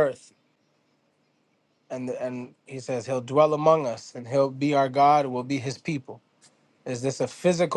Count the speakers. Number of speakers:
1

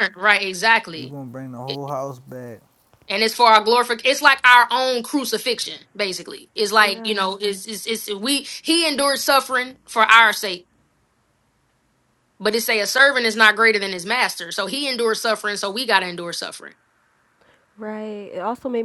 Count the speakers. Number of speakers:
3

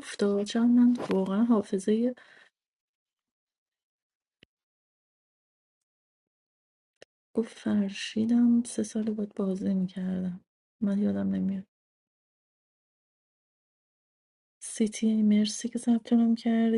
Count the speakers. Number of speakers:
1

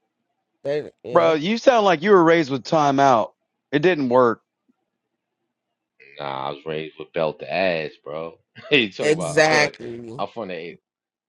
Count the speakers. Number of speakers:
3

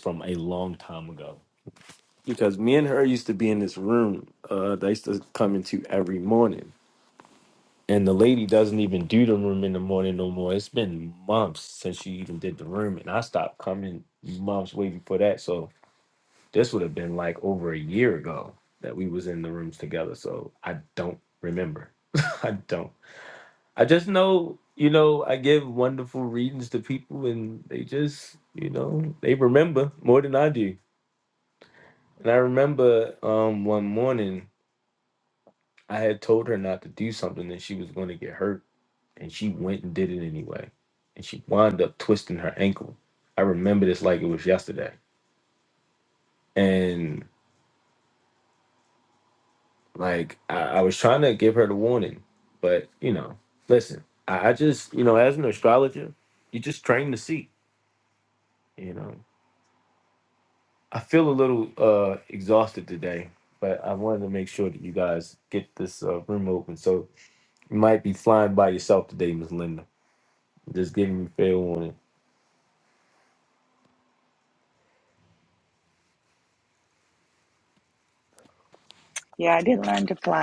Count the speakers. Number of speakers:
2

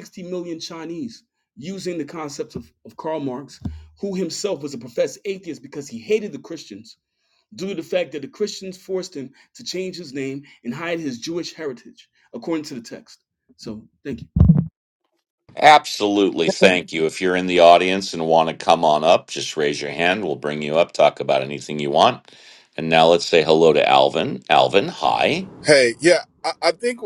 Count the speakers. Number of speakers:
3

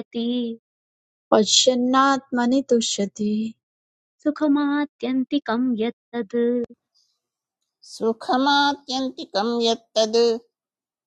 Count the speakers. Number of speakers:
3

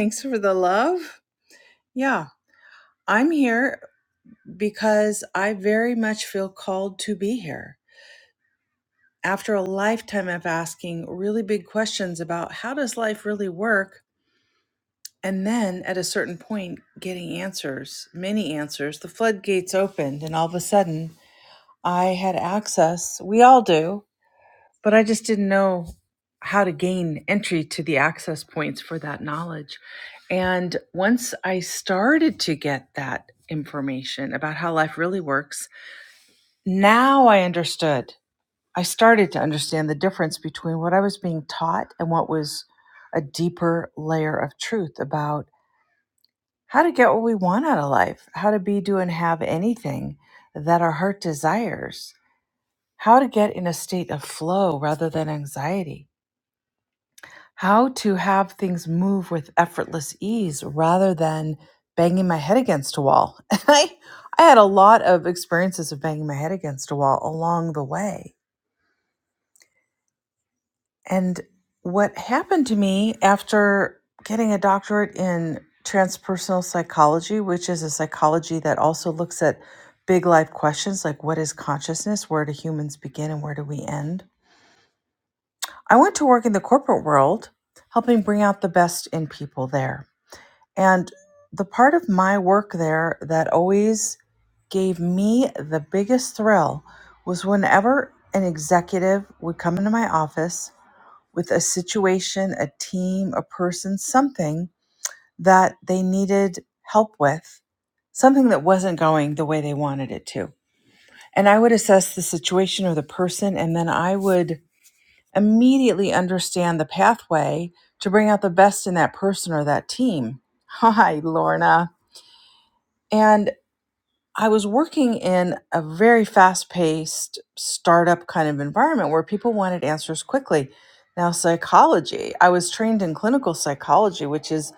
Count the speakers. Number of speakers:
1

